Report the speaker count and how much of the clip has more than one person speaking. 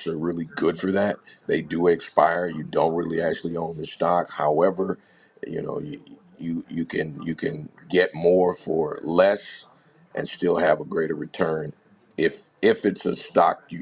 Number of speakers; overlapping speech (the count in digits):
1, no overlap